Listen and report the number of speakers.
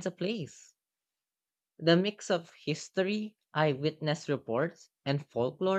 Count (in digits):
1